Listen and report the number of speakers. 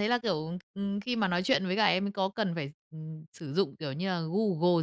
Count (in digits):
1